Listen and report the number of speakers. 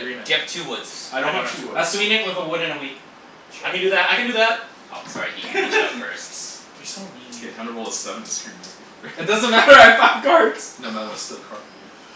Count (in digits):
4